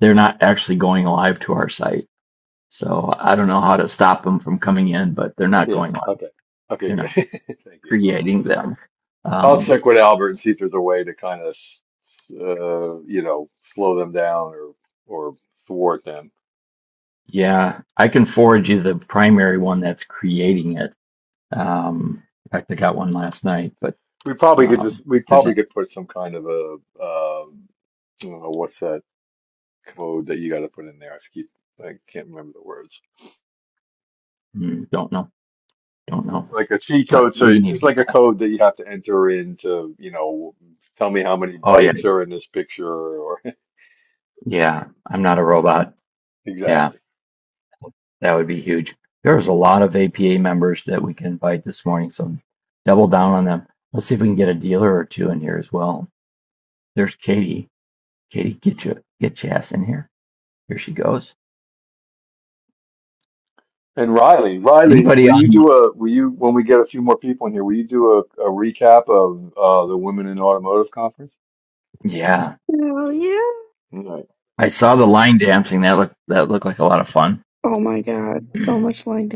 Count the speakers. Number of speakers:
3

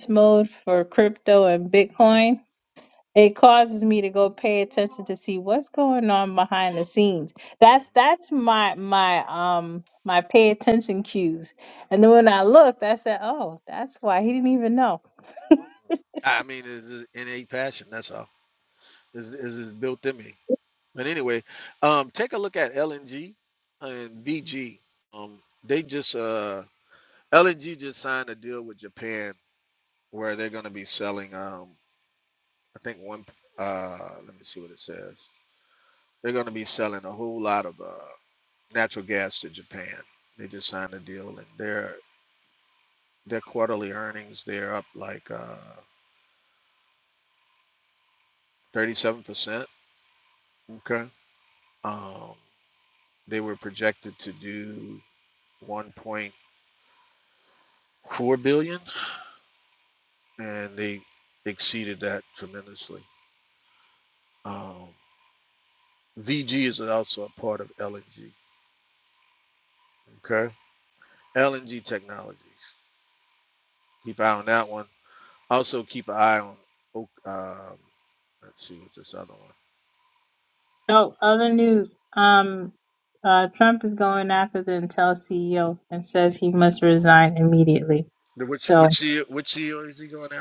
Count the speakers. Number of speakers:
2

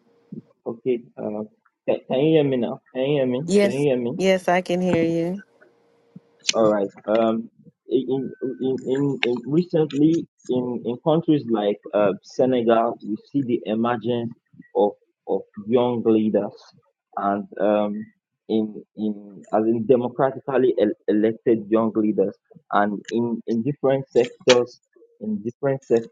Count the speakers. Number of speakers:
2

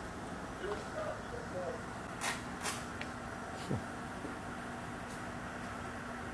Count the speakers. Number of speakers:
0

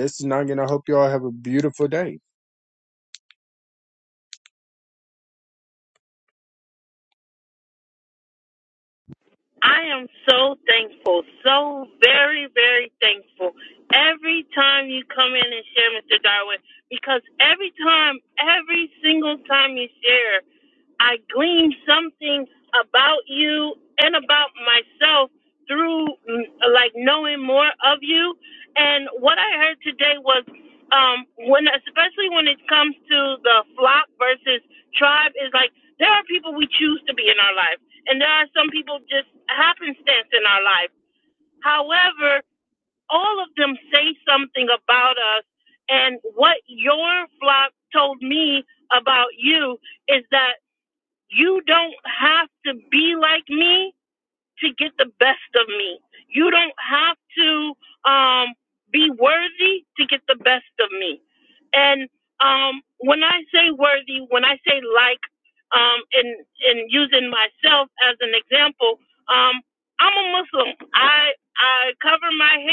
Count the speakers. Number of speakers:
2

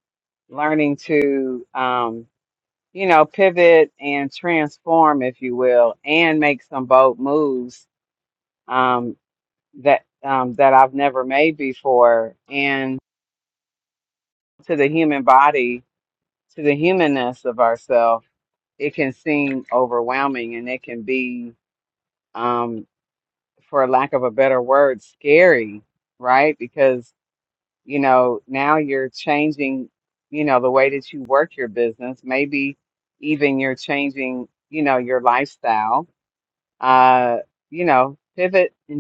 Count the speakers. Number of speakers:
1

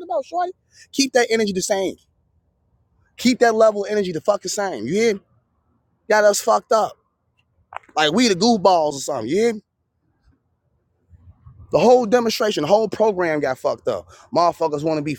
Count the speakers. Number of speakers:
1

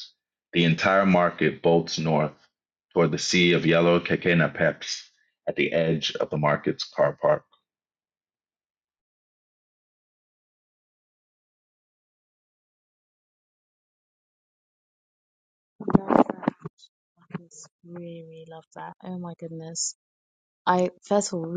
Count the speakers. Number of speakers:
2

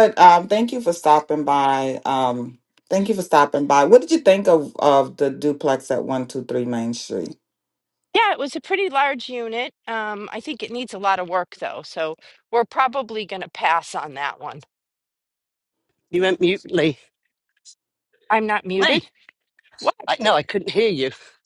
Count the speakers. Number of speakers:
3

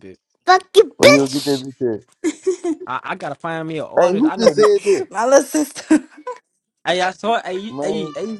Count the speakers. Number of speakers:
3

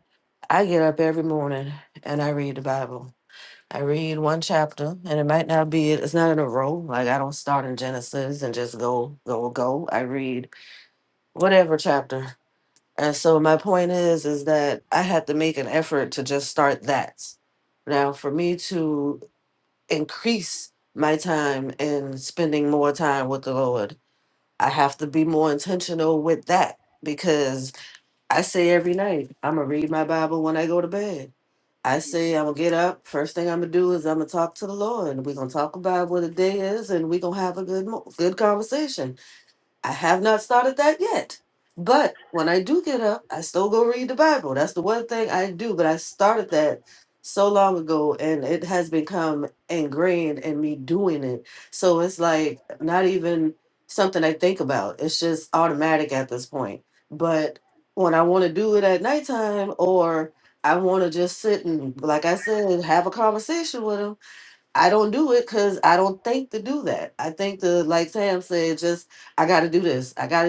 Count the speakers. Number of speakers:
1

